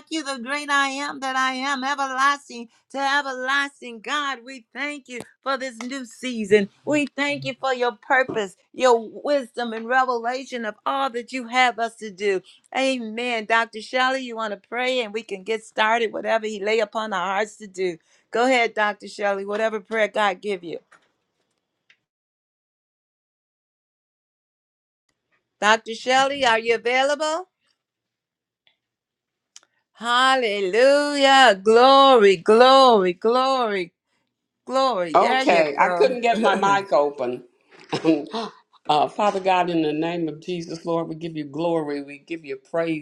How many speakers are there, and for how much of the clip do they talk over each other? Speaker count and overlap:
two, about 2%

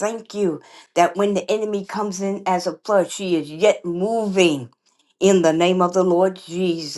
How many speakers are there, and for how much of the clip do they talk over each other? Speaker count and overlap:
one, no overlap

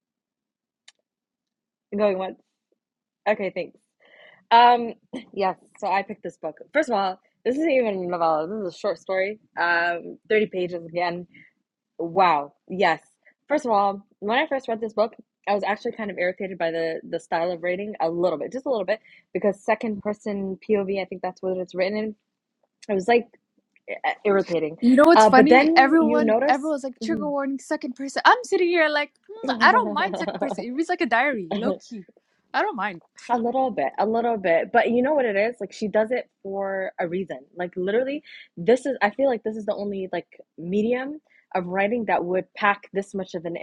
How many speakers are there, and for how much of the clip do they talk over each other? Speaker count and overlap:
two, about 4%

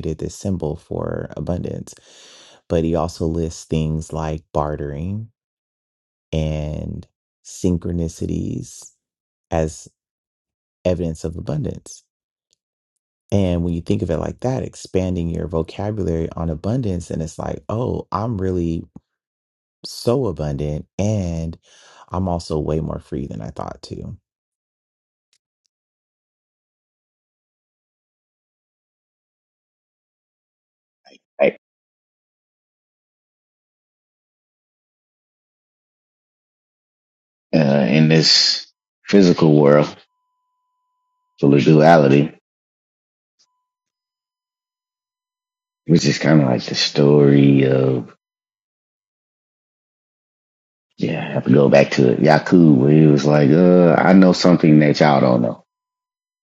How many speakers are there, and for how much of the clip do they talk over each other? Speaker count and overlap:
two, no overlap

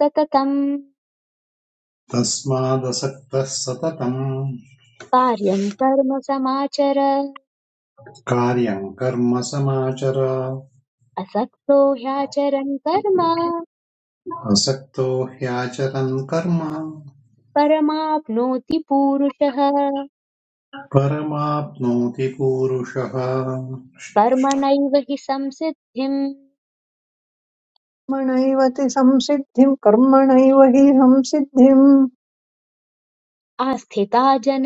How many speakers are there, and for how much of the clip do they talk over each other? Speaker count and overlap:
three, no overlap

